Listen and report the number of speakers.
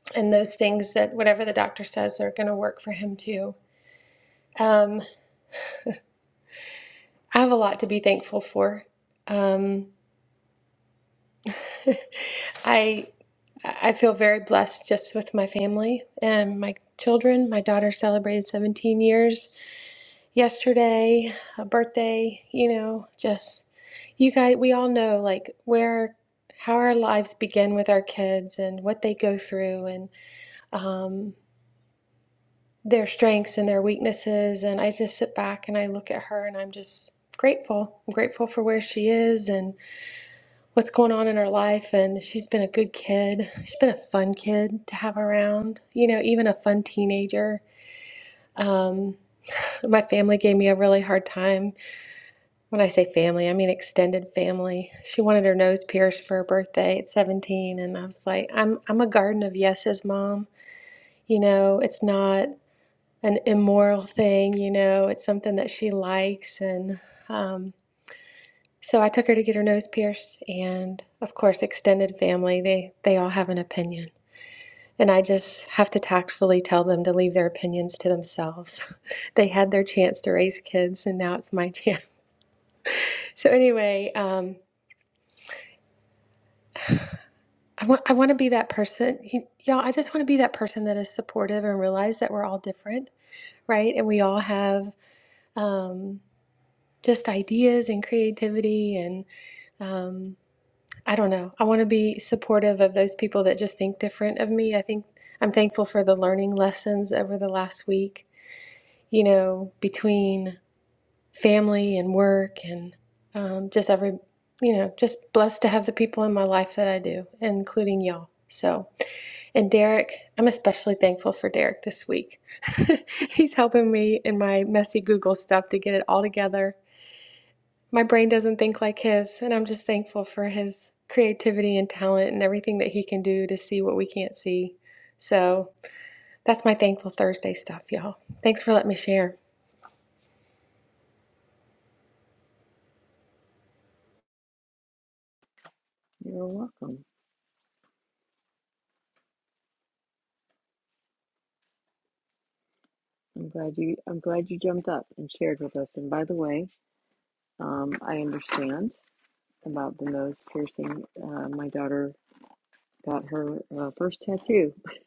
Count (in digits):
2